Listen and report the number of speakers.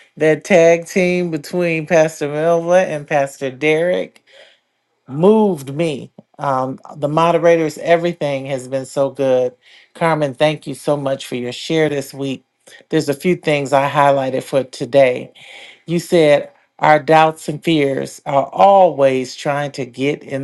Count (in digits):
1